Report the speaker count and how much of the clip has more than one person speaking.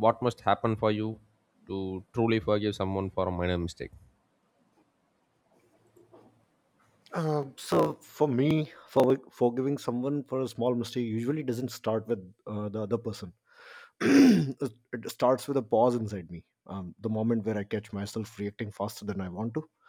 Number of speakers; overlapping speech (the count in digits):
2, no overlap